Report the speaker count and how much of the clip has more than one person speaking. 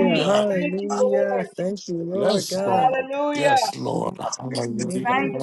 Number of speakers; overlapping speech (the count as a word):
three, about 60%